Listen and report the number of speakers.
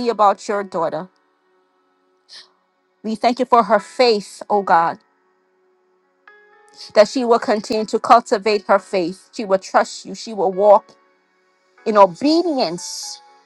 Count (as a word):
one